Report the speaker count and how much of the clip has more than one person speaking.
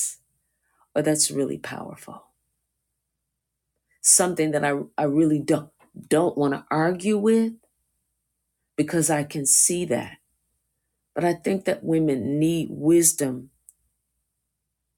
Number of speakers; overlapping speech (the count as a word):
one, no overlap